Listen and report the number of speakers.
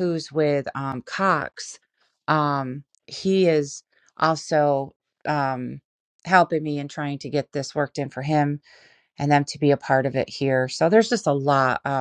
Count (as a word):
one